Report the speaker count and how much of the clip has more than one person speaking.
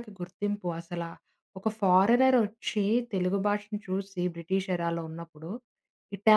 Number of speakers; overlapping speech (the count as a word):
one, no overlap